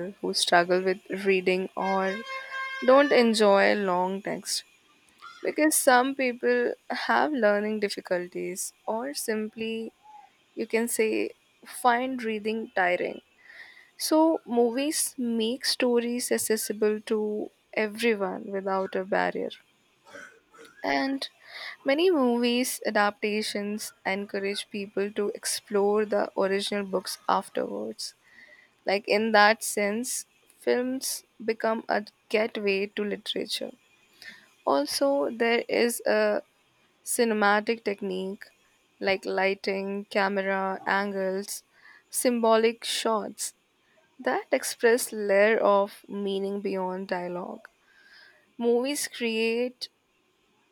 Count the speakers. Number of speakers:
one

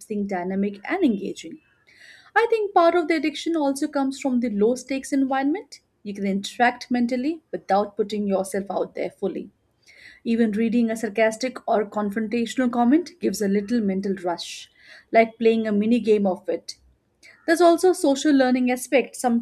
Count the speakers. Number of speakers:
one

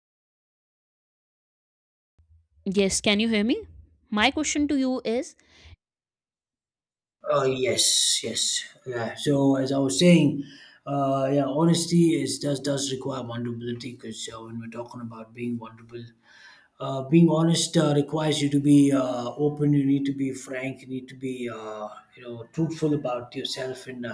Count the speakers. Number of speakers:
two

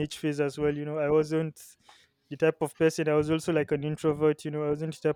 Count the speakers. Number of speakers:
one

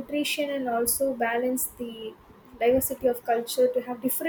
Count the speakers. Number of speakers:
one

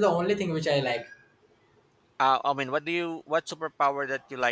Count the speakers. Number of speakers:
two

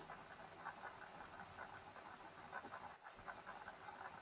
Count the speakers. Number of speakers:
zero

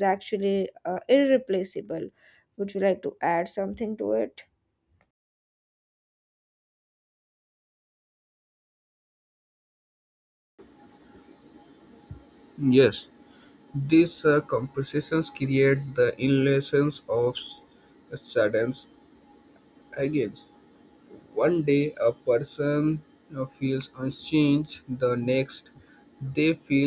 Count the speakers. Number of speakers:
two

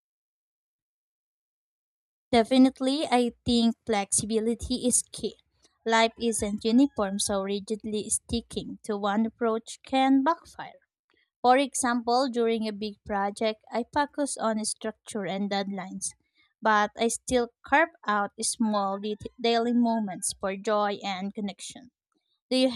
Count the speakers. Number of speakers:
one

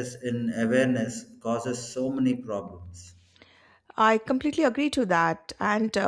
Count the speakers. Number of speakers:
two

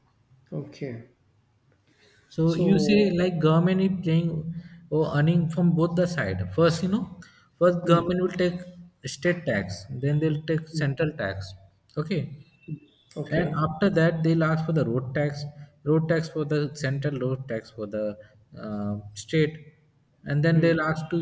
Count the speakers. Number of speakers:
two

